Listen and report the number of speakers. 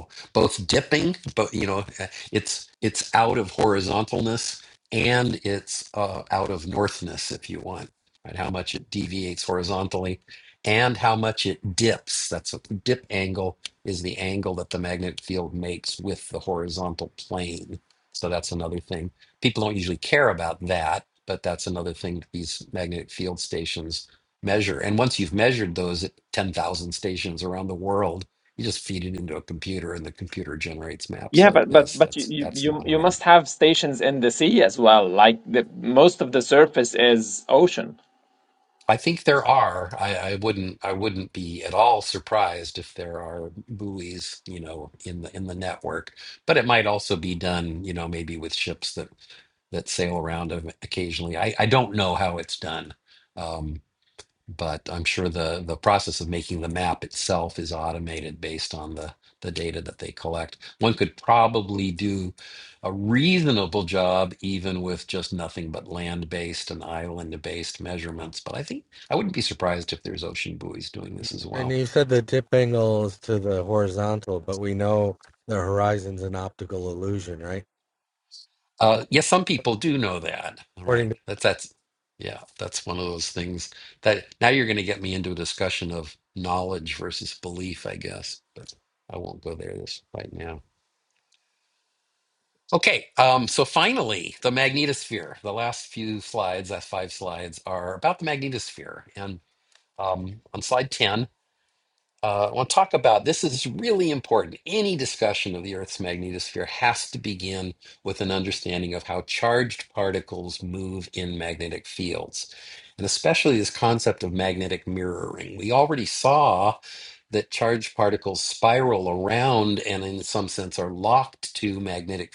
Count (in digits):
3